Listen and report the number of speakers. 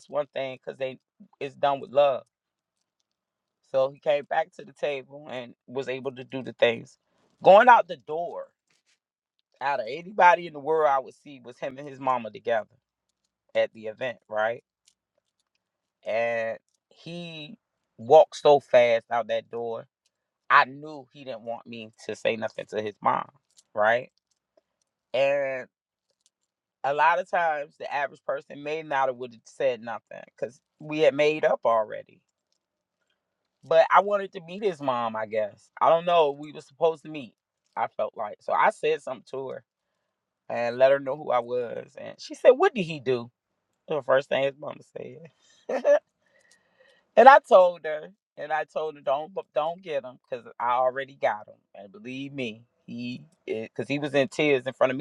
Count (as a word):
one